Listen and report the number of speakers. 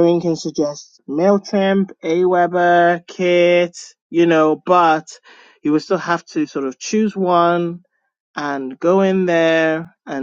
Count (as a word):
one